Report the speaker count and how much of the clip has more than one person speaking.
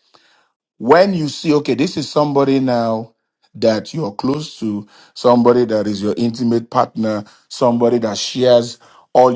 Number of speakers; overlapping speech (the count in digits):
1, no overlap